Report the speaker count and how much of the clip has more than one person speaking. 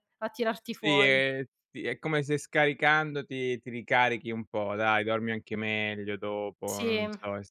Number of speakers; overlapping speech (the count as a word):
two, about 11%